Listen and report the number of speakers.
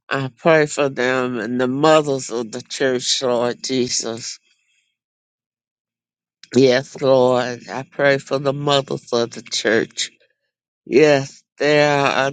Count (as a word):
one